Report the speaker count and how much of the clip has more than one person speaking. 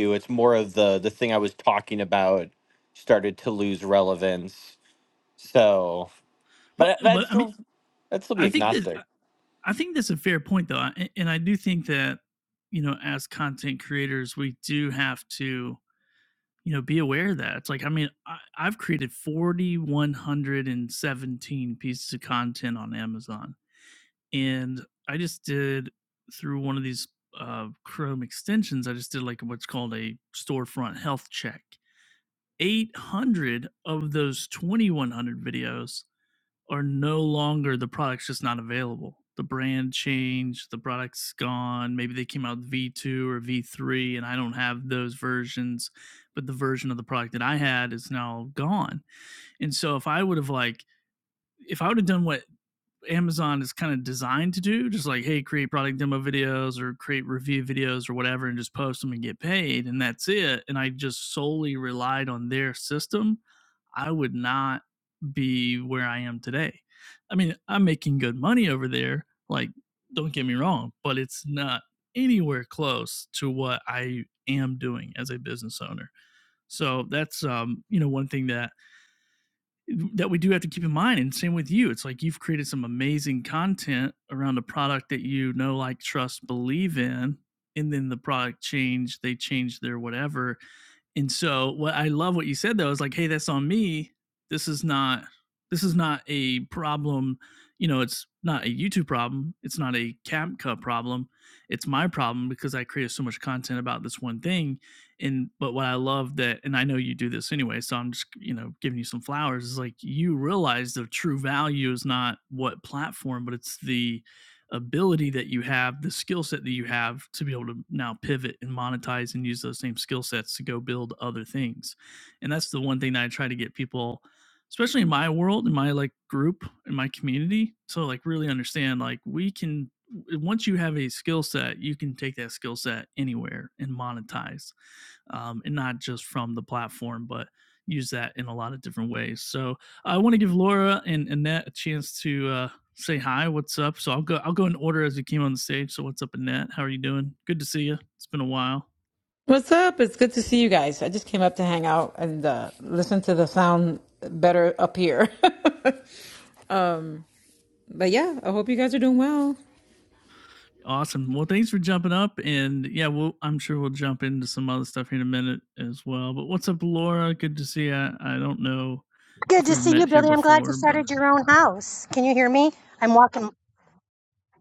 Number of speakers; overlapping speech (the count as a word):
four, about 2%